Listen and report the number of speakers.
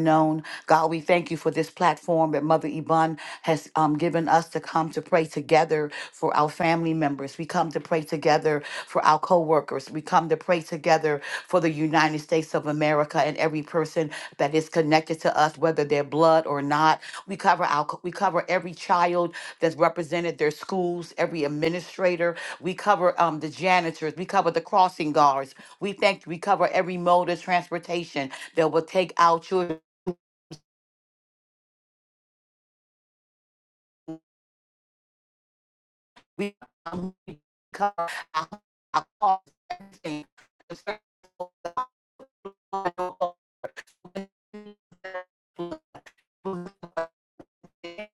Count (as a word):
one